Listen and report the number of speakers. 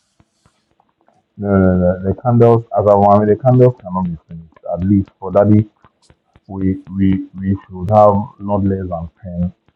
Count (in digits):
1